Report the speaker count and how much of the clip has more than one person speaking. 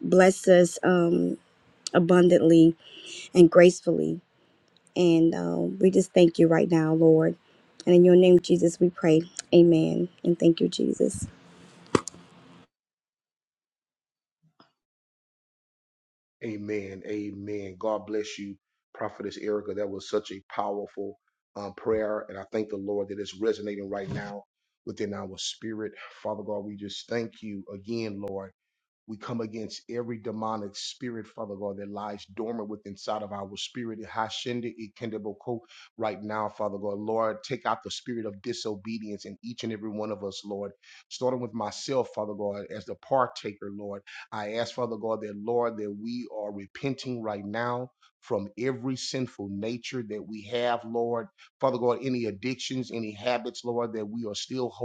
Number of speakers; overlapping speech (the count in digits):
2, no overlap